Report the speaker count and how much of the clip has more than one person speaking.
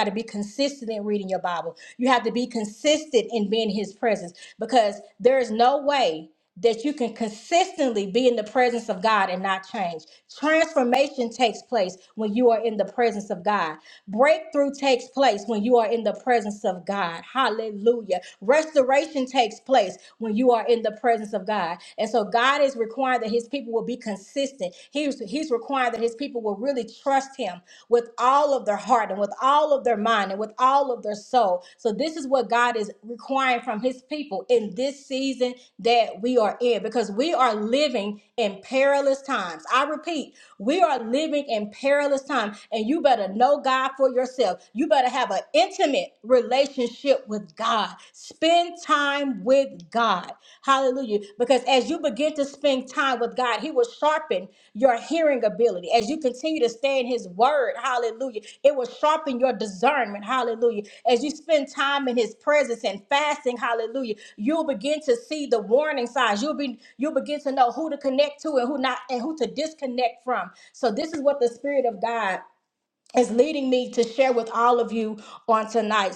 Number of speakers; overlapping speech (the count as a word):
one, no overlap